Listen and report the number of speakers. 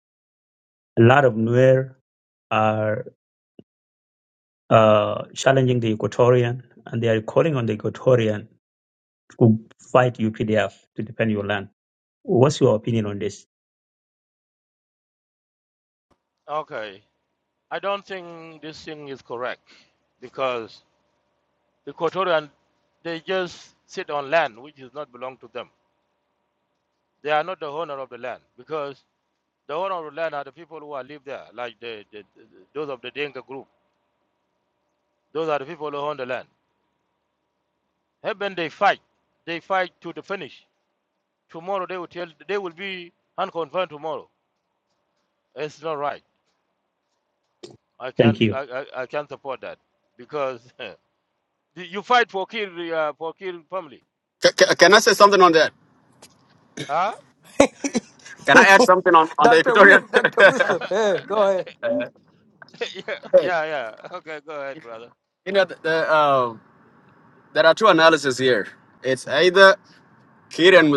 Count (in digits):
4